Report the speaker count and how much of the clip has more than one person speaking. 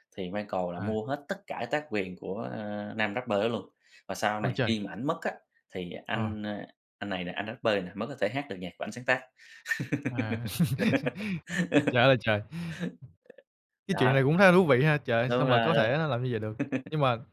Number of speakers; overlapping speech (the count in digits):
2, about 8%